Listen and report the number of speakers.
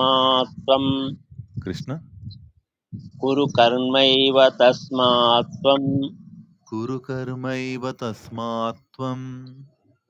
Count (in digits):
2